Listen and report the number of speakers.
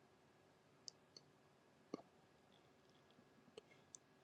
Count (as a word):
zero